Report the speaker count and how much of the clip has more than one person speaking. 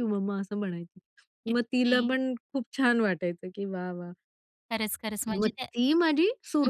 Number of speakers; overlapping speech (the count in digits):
2, about 18%